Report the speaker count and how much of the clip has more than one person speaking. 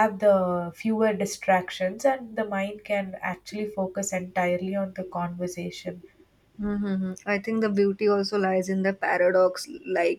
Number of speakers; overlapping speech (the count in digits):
2, no overlap